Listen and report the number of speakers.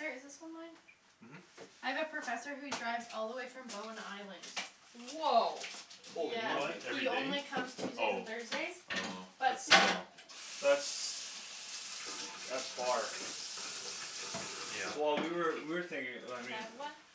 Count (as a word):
four